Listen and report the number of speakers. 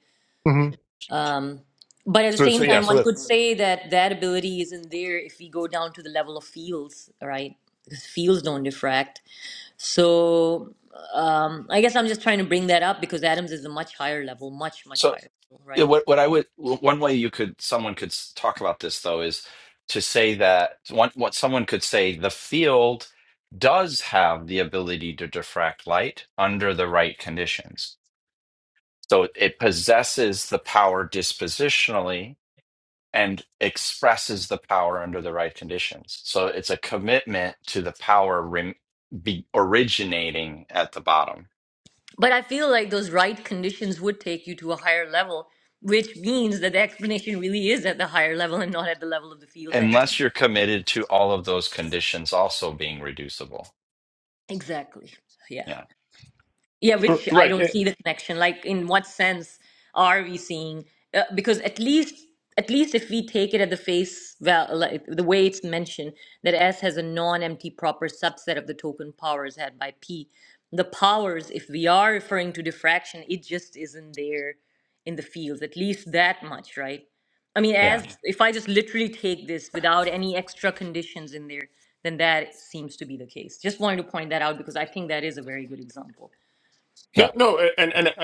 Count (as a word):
three